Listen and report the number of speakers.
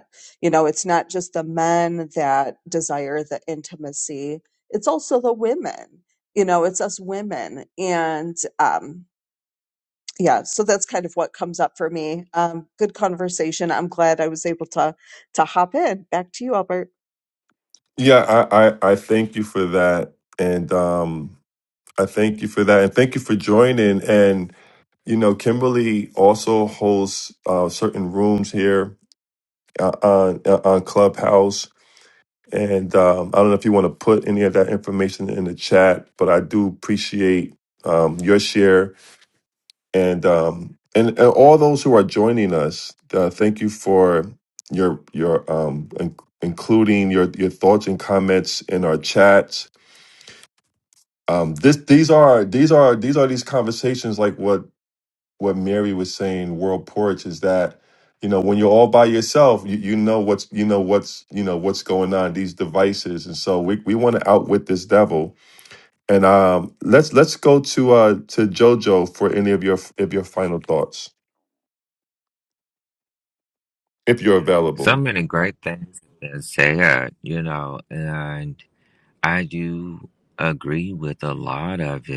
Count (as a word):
three